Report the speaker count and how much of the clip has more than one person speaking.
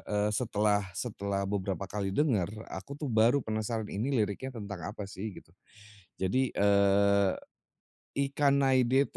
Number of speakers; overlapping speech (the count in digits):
1, no overlap